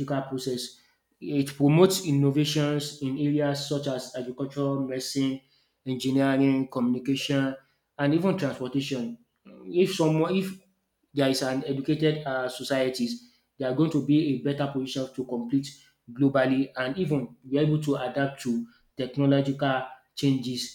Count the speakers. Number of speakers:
1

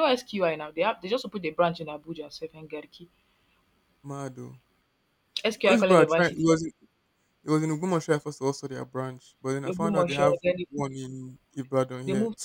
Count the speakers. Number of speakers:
2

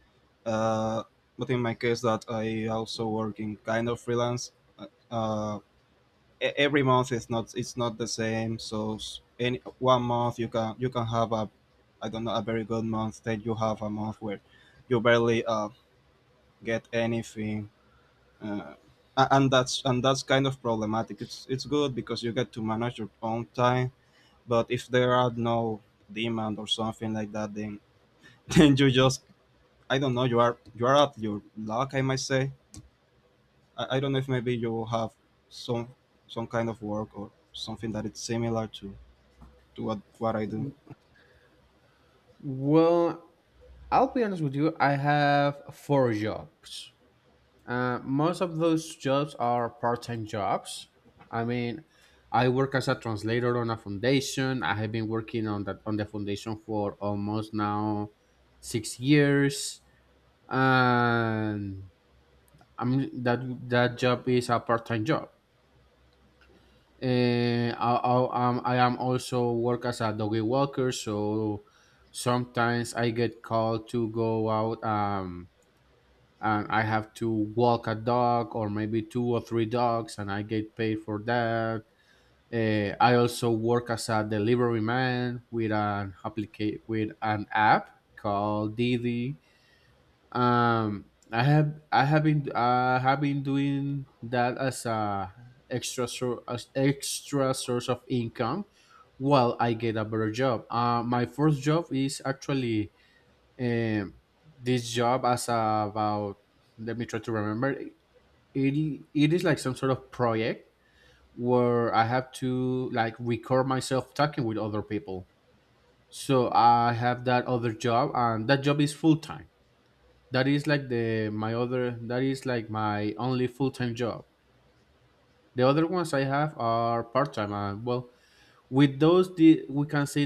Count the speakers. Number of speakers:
2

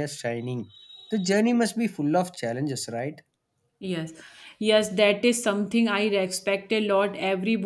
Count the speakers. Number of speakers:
2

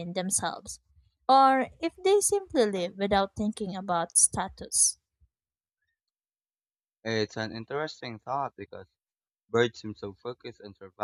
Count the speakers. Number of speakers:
2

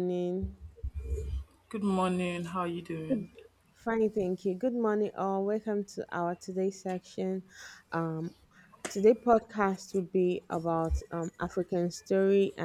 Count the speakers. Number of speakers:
2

